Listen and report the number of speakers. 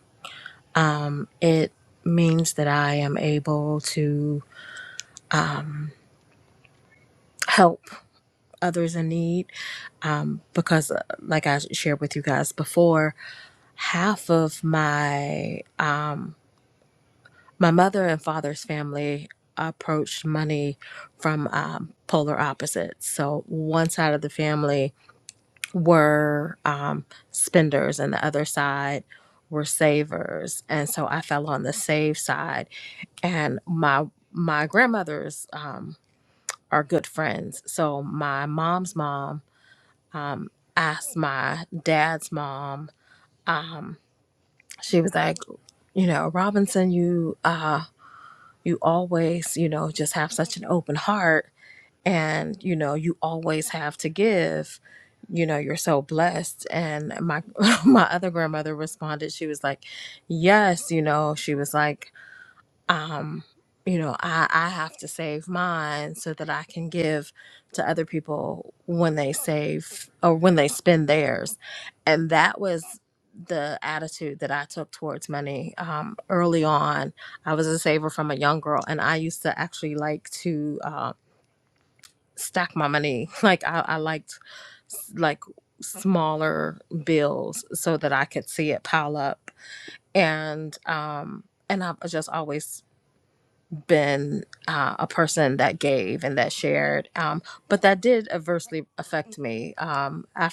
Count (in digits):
1